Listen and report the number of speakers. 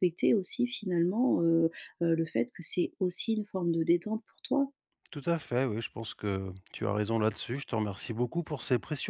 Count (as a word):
two